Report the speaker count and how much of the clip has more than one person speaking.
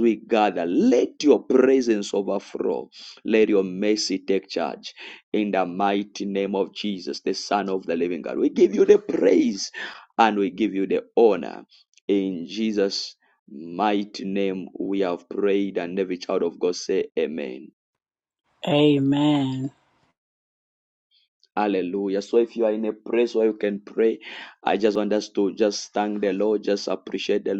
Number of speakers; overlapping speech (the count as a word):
two, no overlap